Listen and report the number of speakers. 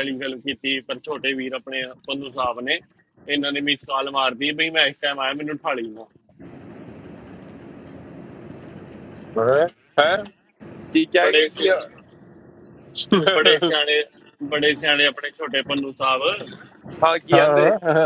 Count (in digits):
3